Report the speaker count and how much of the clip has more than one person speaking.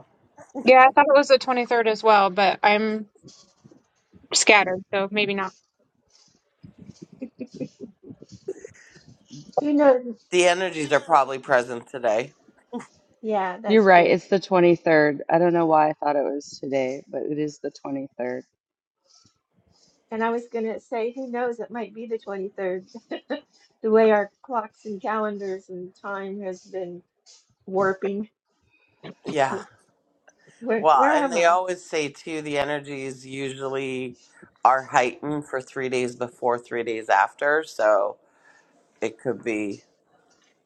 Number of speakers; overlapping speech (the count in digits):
4, about 3%